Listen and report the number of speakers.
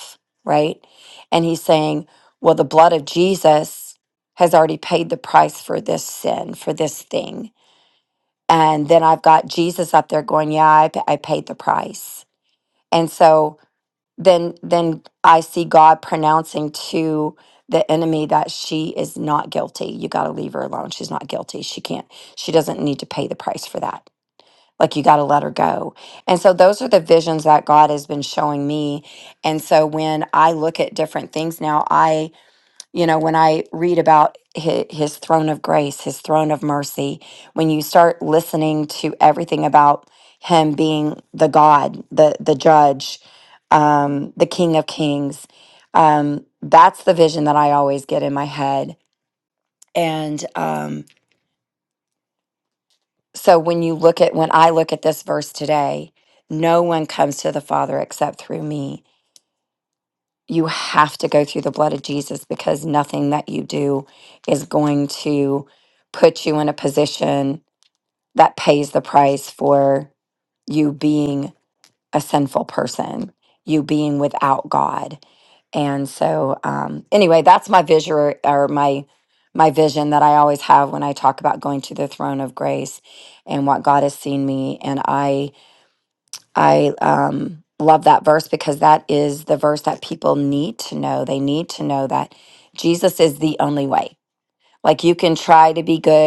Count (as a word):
one